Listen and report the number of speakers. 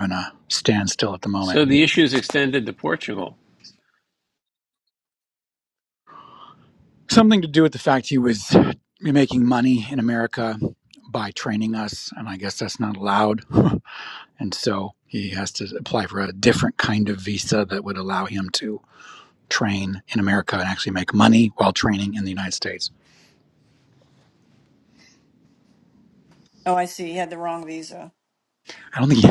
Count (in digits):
3